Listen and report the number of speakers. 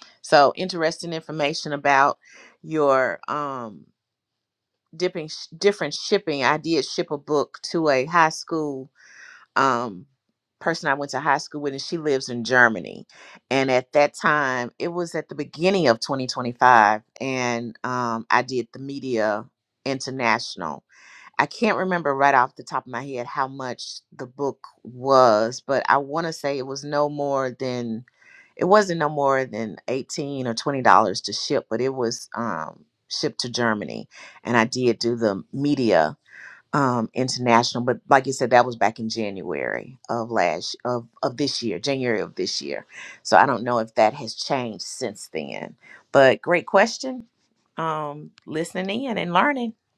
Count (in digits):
1